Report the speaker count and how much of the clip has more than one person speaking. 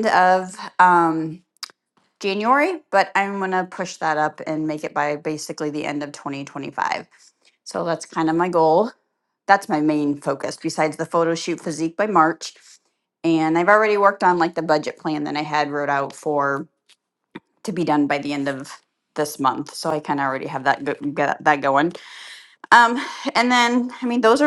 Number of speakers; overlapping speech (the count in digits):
1, no overlap